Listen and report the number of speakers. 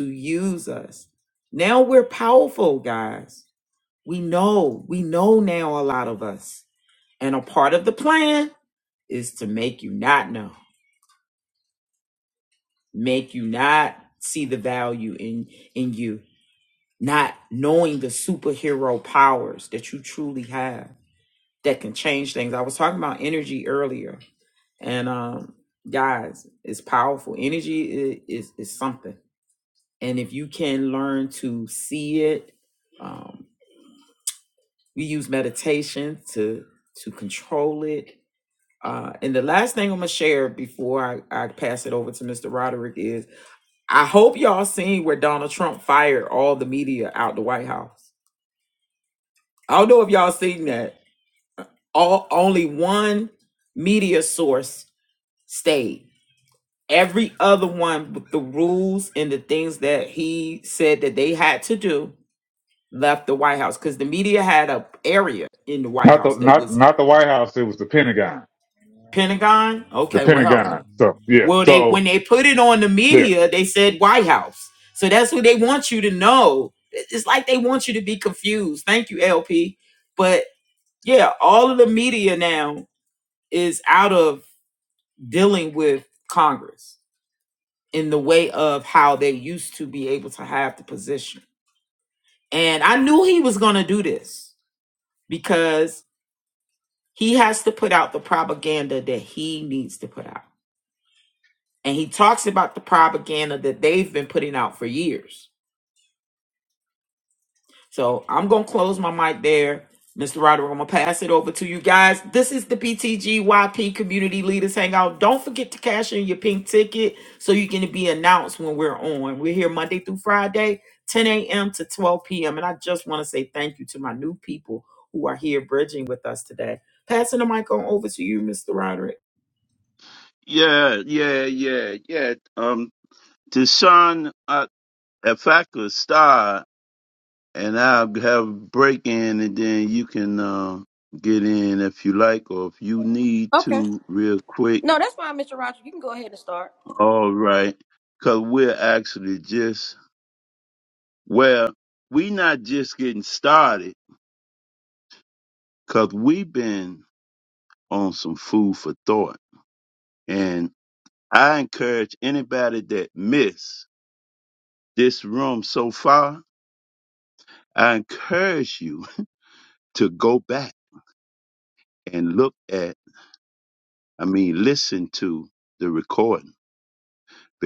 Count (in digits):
4